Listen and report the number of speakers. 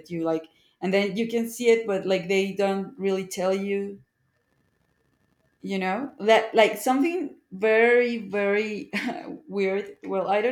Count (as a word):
one